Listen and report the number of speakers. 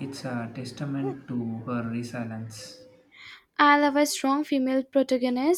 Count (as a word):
two